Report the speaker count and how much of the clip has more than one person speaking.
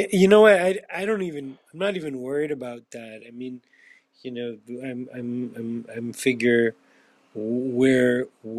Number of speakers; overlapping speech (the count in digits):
1, no overlap